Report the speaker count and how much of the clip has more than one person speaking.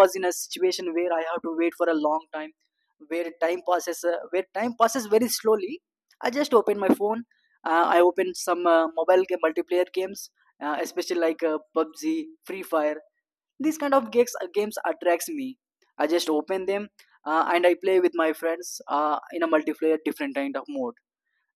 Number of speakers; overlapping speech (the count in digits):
1, no overlap